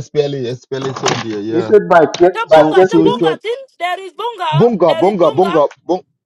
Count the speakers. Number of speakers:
three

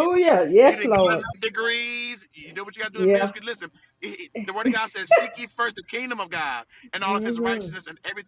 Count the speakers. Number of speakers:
two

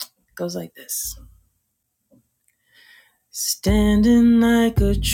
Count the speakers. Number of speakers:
one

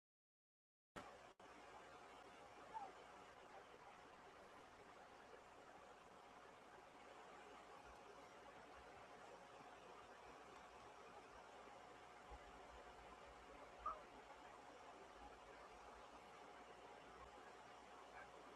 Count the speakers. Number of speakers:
zero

